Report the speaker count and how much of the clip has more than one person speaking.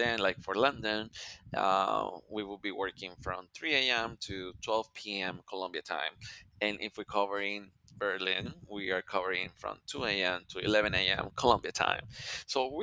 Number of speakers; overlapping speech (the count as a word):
one, no overlap